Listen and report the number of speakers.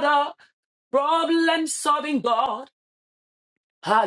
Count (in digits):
1